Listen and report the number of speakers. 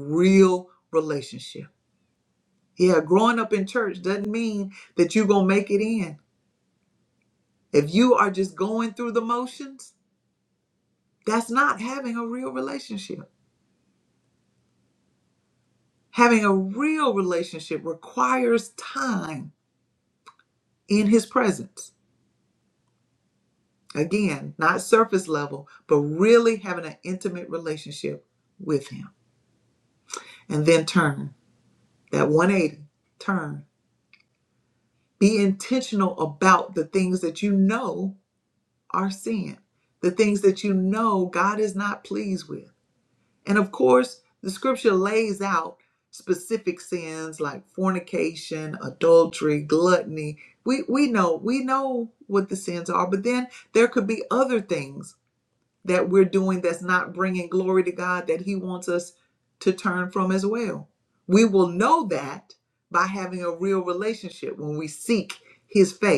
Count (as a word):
one